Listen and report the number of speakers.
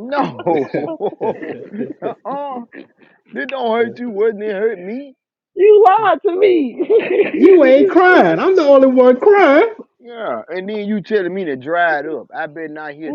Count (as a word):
three